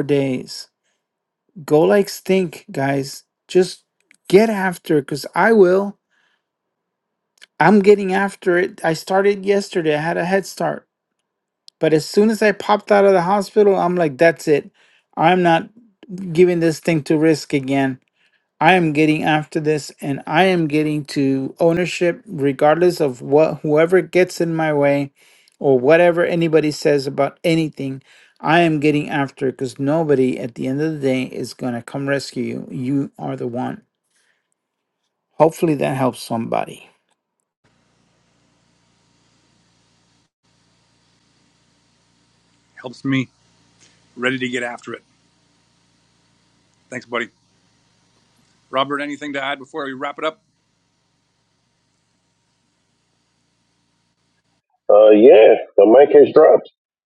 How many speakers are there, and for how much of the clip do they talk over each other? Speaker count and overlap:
three, no overlap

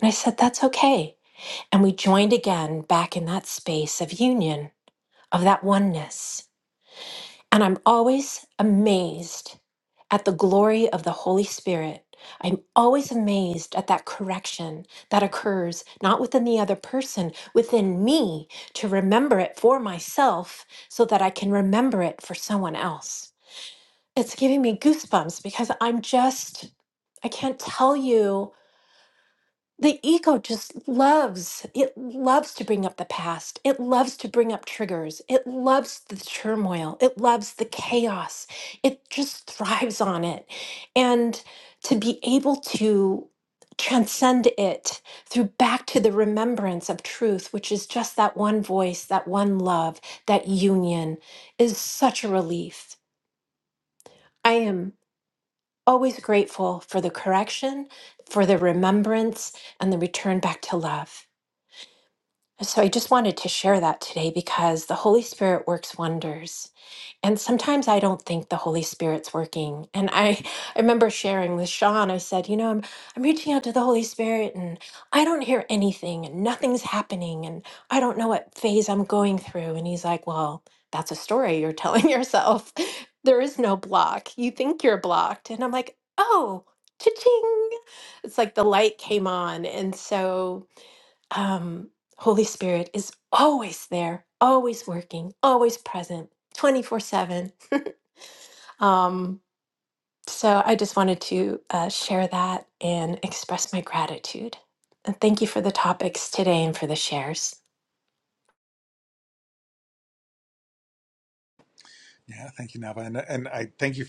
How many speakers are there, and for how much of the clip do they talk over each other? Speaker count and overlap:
two, no overlap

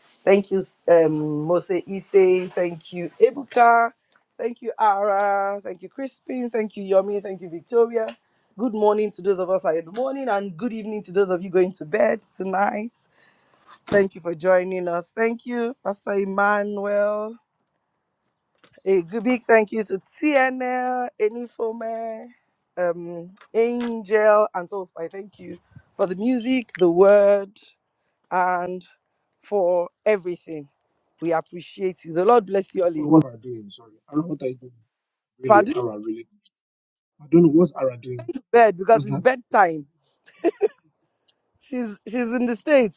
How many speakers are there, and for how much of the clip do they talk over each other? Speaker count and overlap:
two, about 2%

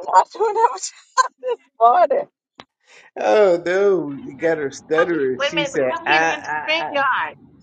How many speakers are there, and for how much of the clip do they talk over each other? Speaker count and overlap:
three, about 27%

